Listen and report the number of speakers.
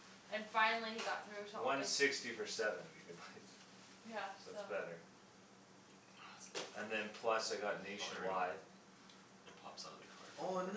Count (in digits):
3